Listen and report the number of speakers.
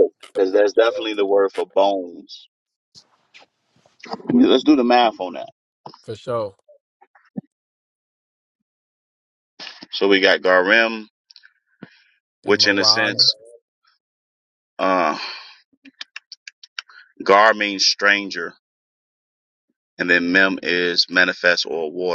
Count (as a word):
two